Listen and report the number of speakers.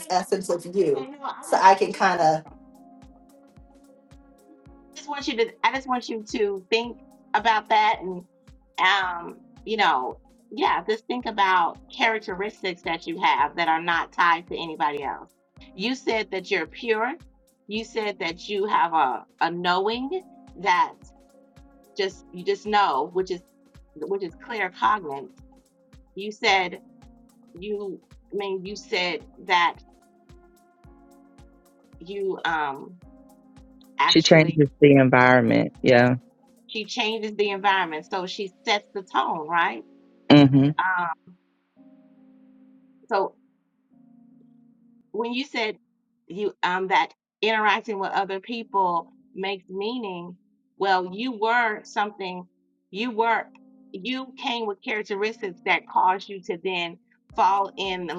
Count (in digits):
3